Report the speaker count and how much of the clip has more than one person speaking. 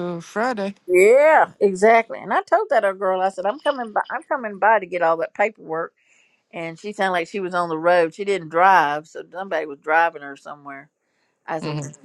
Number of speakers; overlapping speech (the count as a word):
two, about 2%